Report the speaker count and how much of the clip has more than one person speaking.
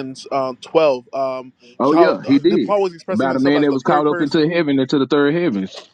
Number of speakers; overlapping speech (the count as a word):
two, about 31%